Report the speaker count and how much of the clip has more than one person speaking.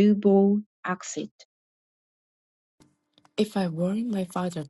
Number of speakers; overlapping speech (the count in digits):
2, no overlap